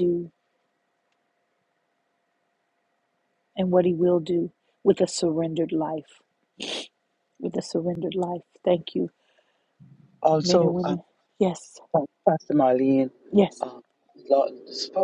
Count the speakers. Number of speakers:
2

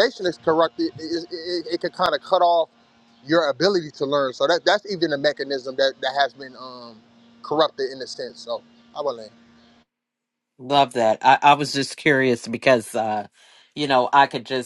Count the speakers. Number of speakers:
2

